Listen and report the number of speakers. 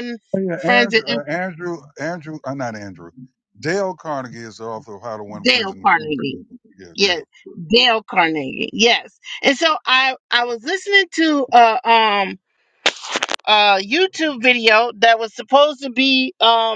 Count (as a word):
two